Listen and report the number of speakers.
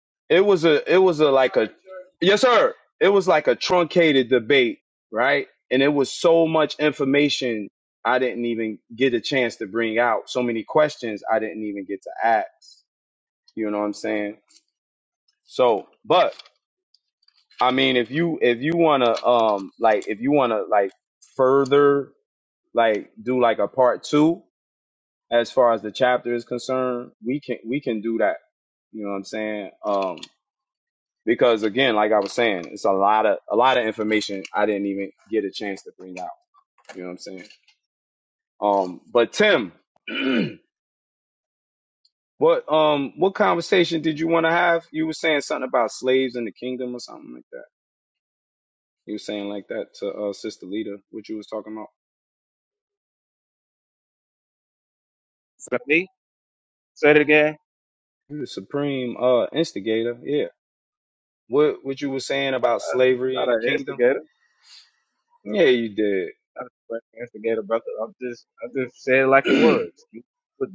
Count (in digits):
2